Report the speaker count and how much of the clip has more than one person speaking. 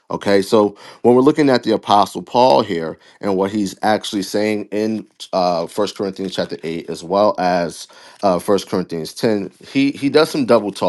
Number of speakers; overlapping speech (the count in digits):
1, no overlap